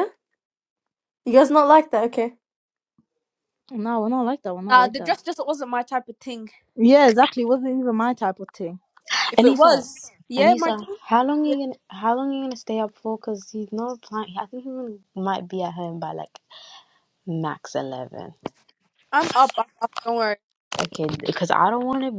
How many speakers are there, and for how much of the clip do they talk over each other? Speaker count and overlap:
four, about 7%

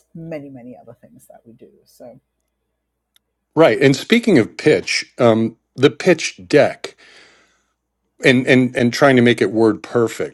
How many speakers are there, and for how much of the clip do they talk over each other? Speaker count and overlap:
two, no overlap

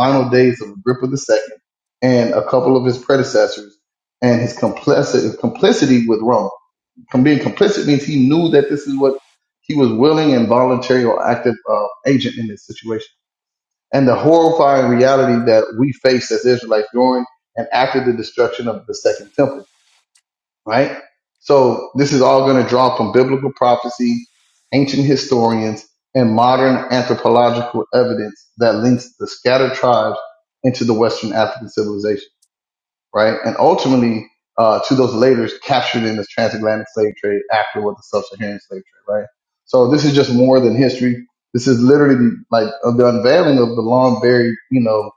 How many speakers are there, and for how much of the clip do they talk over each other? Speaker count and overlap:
one, no overlap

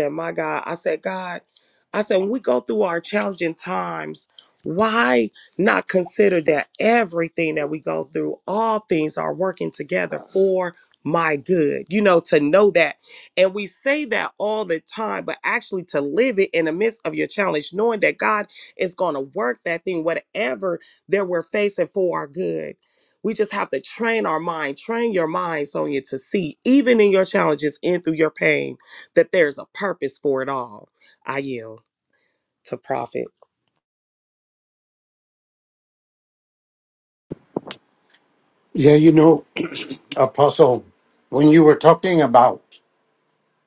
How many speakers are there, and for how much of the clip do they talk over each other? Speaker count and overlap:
two, no overlap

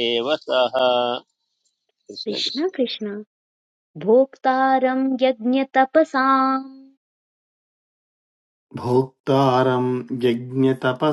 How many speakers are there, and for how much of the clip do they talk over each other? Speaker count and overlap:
three, about 2%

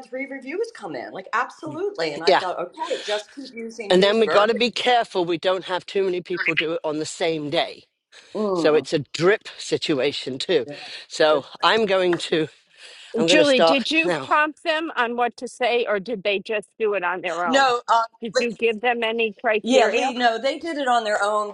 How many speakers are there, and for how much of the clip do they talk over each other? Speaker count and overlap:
three, about 16%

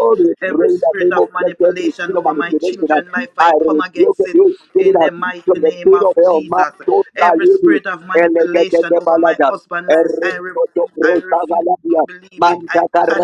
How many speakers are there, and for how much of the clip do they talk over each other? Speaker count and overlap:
two, about 77%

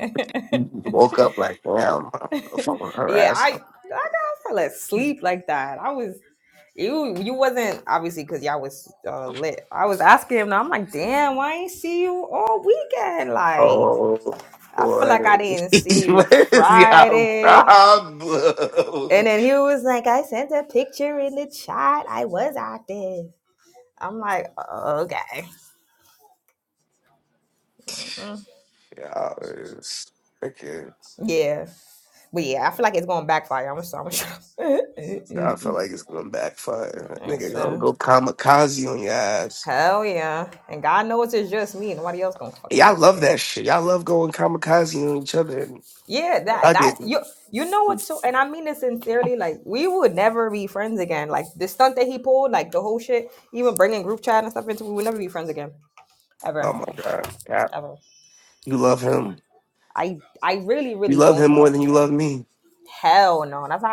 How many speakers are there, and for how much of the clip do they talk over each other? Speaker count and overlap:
two, about 8%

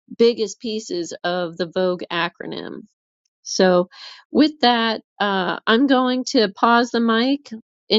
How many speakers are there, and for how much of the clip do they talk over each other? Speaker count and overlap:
one, no overlap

